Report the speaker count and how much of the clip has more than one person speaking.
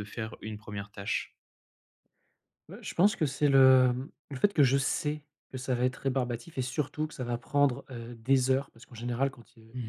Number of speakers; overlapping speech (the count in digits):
2, no overlap